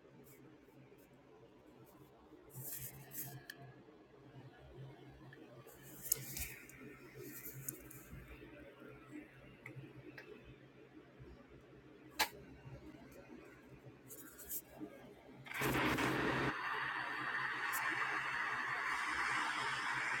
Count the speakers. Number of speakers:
zero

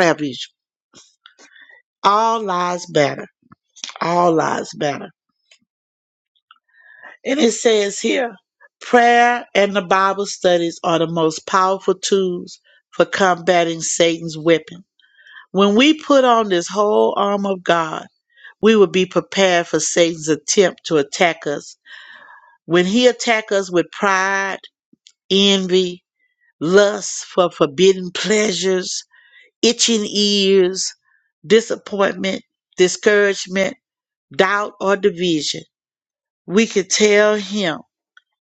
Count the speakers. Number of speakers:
one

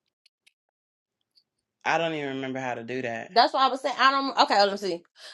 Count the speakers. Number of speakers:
two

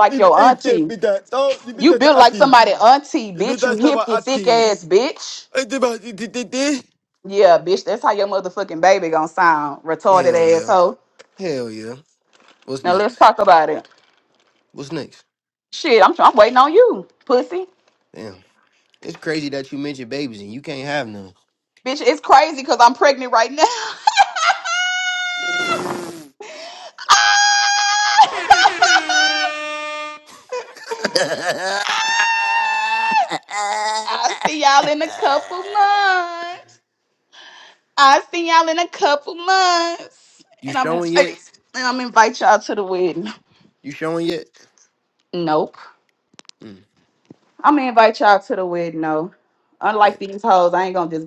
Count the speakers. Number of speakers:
two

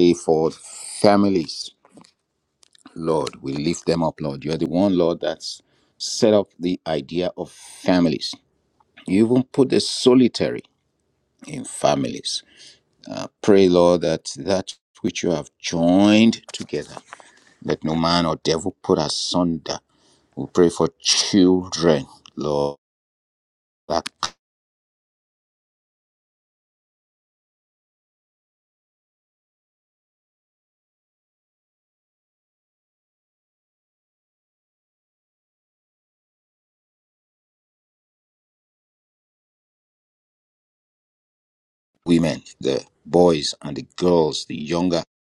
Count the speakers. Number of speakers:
one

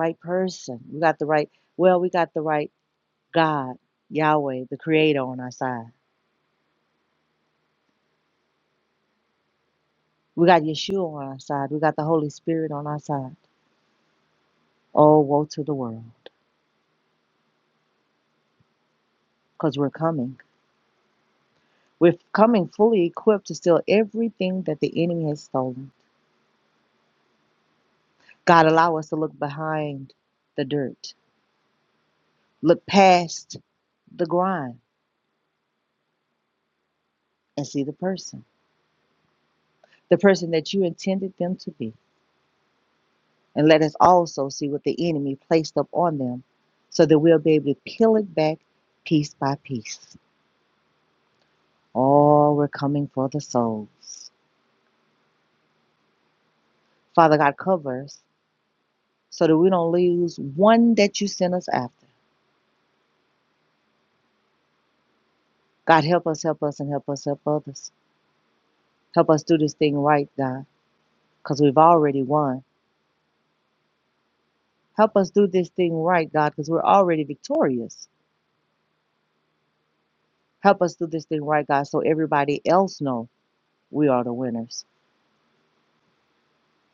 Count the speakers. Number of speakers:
one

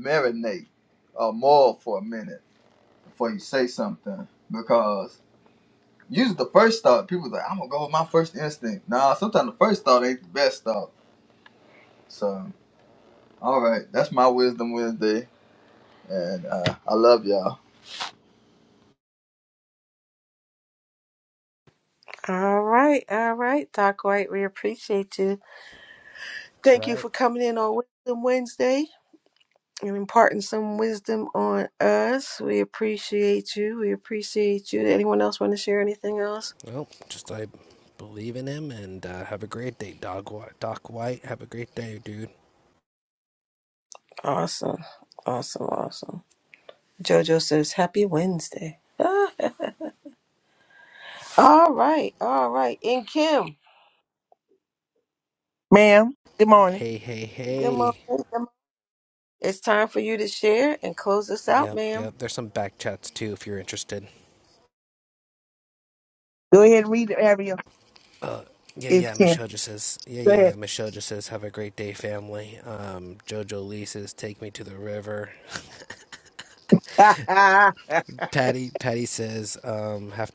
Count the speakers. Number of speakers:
four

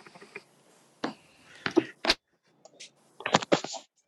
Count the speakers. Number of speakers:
zero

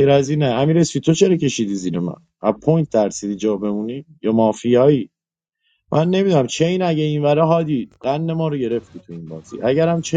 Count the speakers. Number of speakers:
one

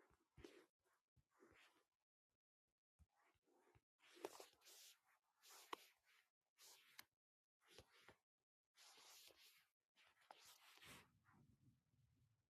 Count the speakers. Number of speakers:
zero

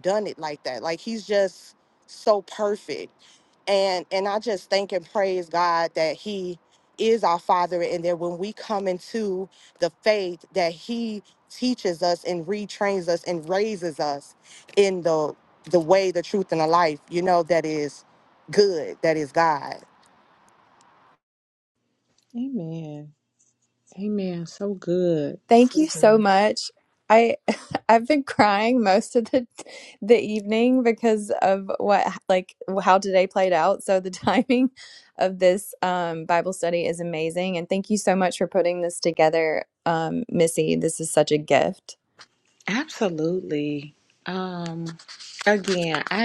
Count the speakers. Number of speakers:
three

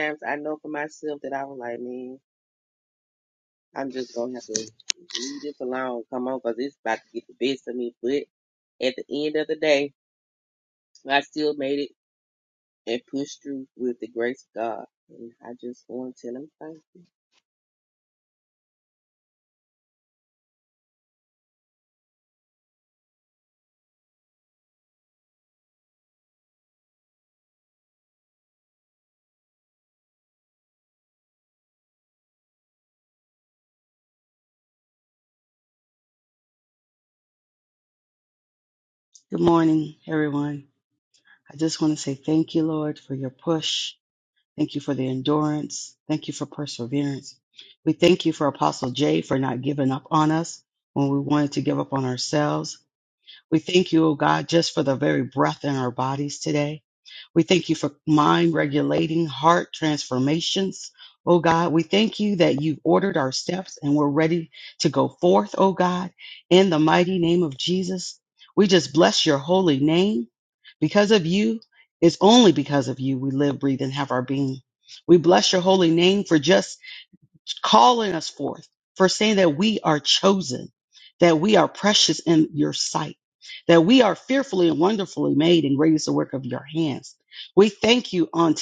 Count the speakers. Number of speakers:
two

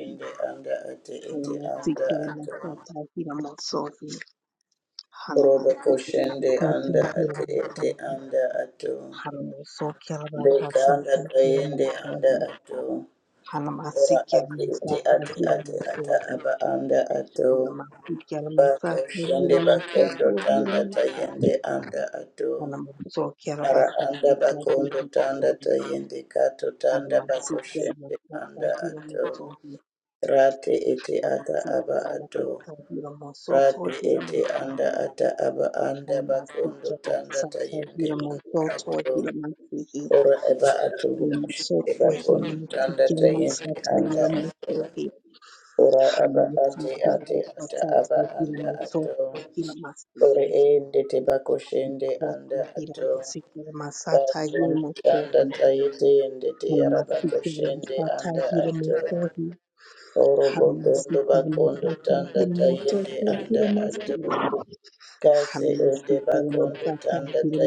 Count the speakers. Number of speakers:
two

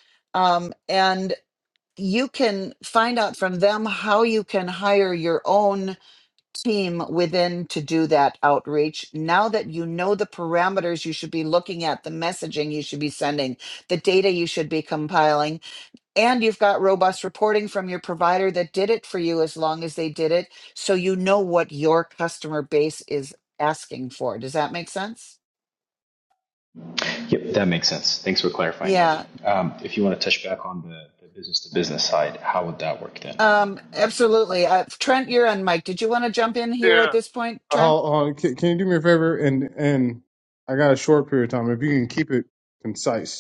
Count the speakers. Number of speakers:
three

